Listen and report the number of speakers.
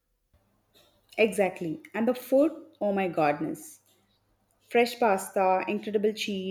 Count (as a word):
one